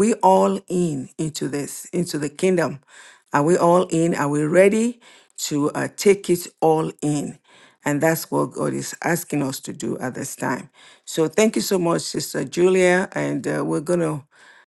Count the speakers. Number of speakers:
1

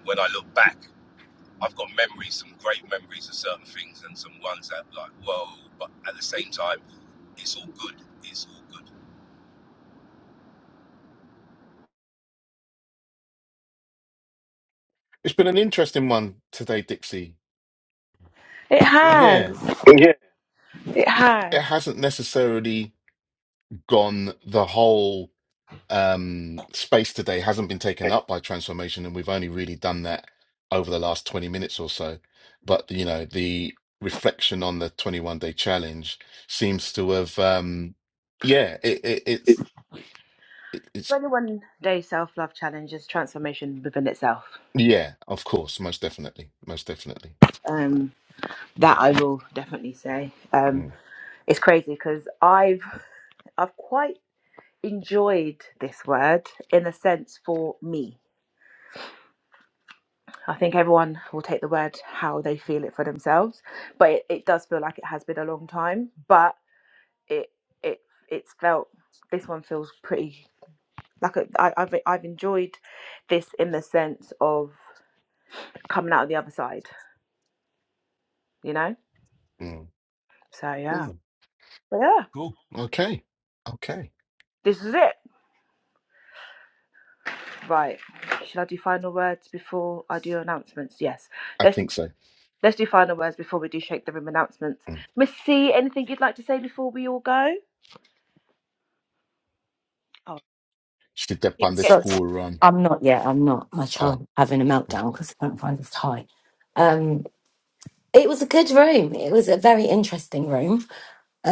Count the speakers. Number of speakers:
4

